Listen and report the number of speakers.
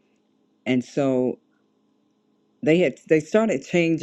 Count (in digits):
1